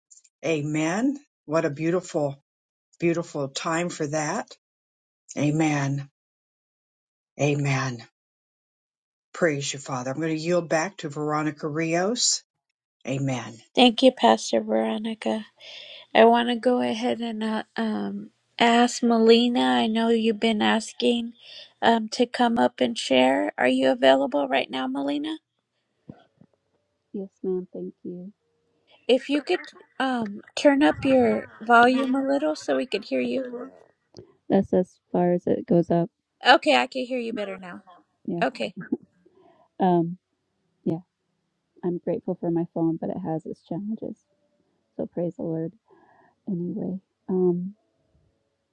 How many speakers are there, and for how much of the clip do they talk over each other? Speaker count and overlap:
three, under 1%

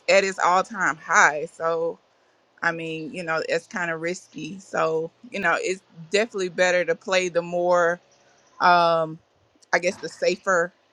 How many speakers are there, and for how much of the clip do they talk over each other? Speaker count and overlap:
one, no overlap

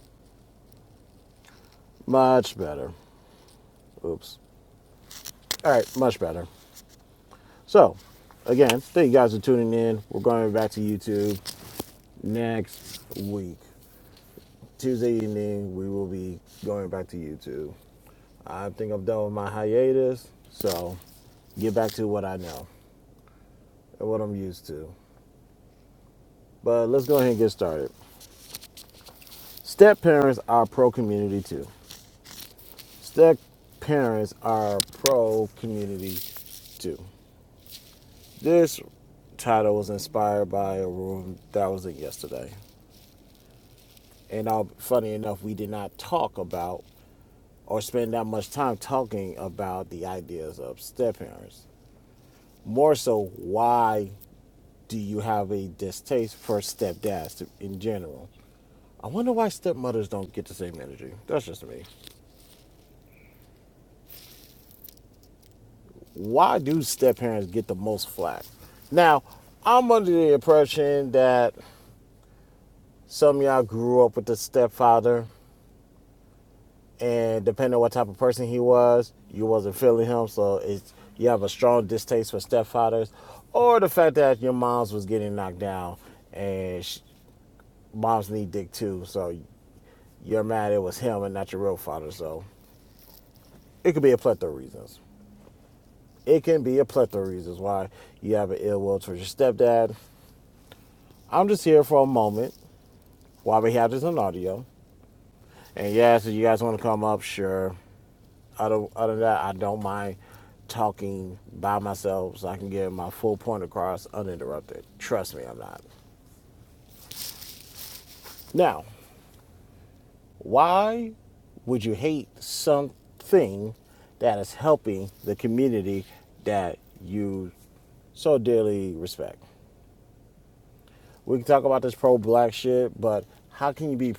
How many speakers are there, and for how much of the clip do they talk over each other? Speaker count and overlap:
one, no overlap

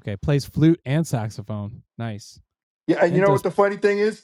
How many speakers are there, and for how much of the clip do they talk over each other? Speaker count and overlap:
two, about 7%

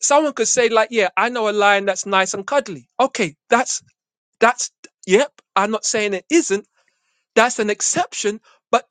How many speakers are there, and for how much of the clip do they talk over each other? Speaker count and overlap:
one, no overlap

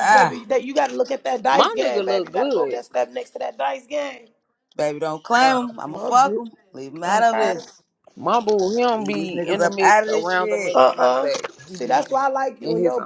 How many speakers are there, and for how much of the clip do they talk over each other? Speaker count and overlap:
three, about 47%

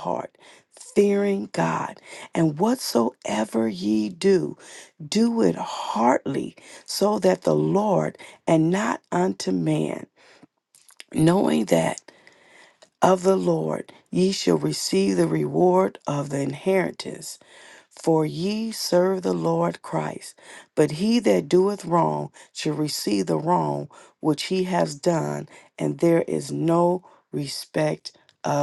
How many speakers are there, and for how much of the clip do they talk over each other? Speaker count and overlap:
one, no overlap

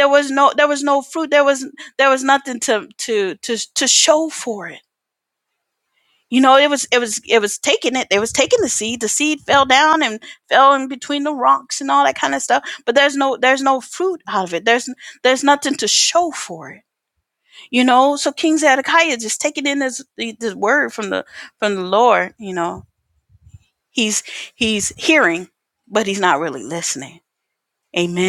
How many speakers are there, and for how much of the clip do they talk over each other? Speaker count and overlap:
one, no overlap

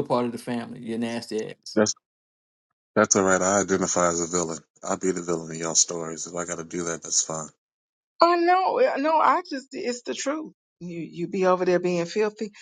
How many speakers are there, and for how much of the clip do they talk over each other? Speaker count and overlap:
three, no overlap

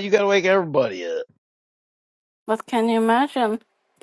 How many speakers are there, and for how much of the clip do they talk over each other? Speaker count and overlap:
two, no overlap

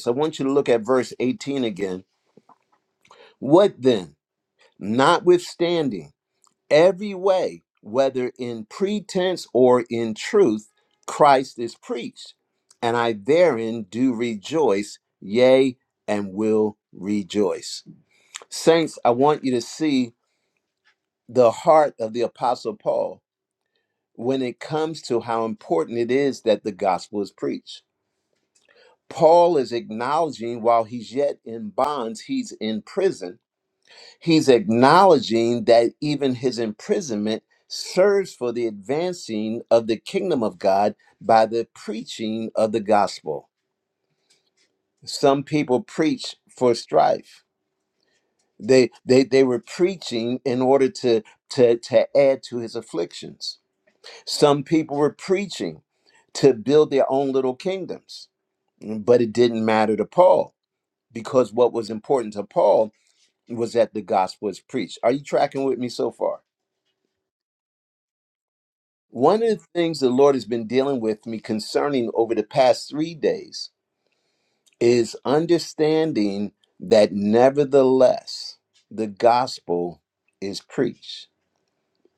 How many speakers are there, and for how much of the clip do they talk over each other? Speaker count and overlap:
one, no overlap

